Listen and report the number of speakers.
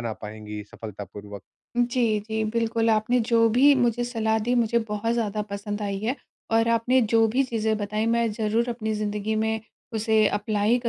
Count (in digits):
2